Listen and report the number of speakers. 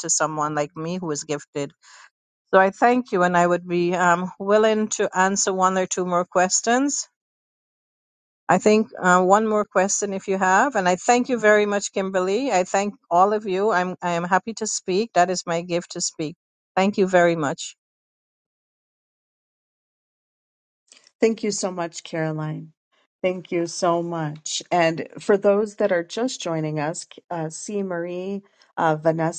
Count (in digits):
2